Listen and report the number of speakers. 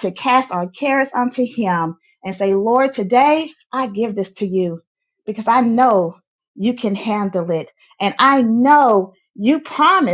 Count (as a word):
one